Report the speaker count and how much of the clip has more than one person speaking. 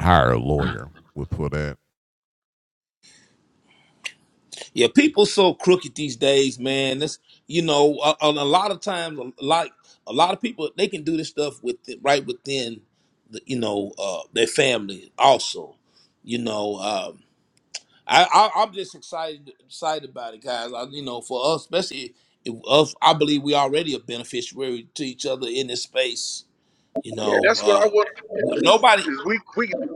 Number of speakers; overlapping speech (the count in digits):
3, about 2%